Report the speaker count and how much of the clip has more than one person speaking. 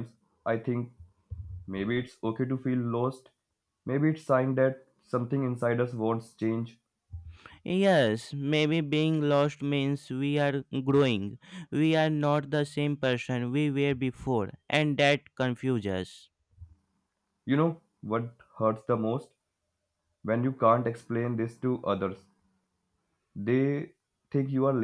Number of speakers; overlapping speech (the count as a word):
two, no overlap